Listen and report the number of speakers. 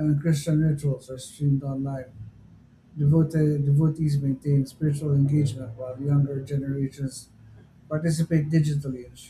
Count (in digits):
1